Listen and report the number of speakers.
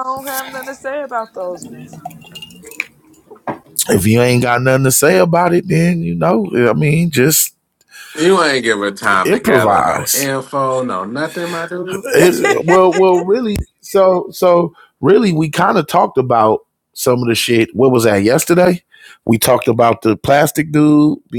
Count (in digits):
3